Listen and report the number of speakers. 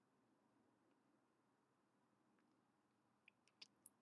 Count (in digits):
0